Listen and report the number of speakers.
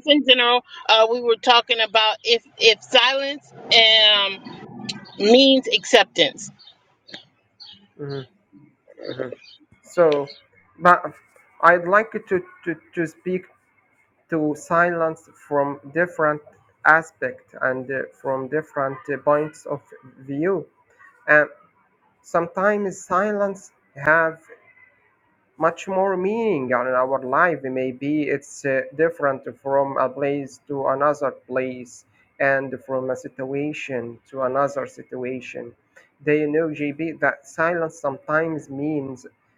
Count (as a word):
two